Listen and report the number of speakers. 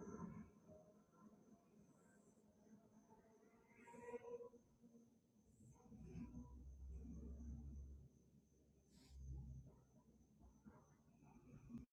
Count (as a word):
zero